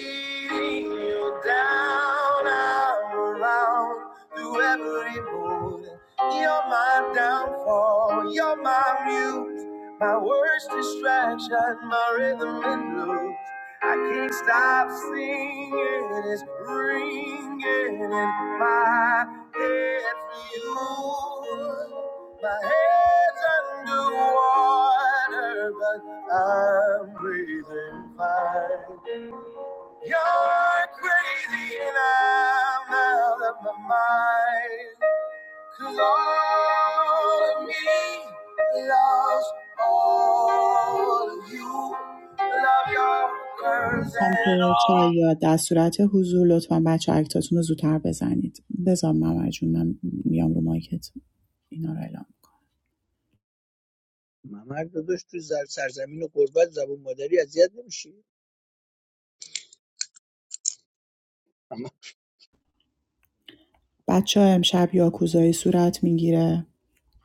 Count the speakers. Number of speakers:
three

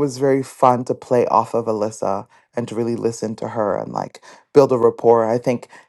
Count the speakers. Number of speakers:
one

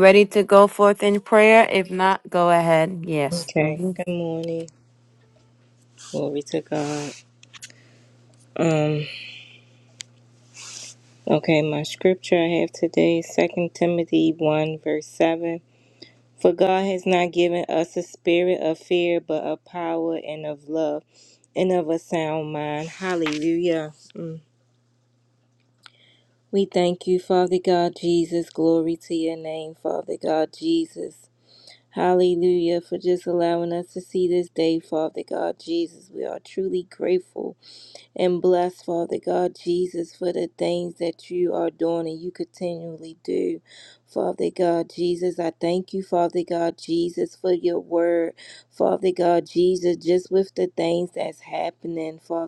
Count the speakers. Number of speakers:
two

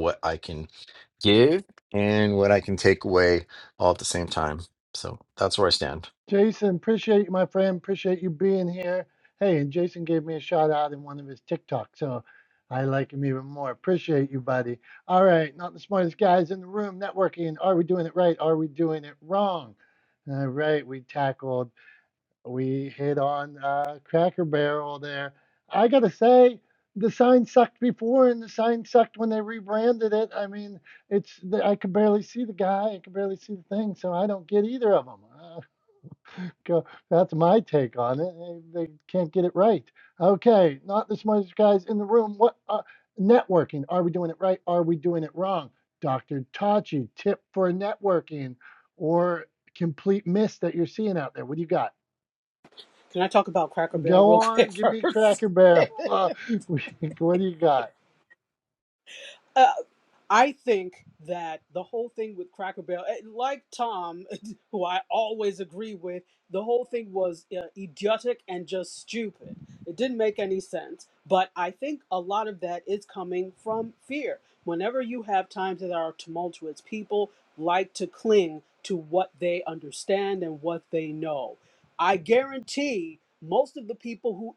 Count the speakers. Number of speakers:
three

